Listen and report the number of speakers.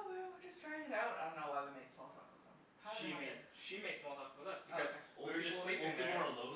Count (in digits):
3